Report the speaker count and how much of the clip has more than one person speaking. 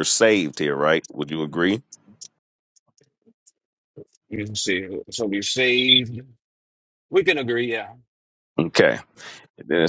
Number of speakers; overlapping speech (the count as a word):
two, no overlap